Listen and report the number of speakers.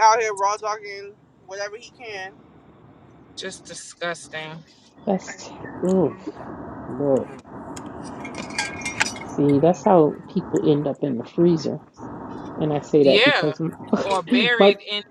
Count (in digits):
3